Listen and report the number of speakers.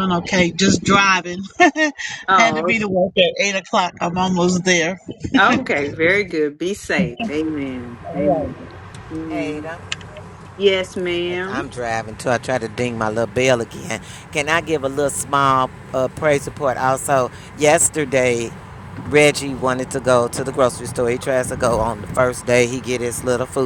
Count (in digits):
3